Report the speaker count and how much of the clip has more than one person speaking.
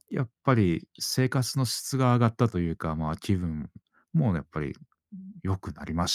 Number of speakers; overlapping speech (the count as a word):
one, no overlap